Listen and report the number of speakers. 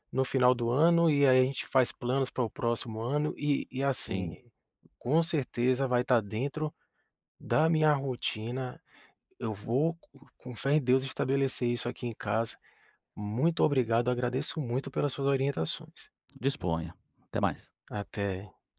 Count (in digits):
2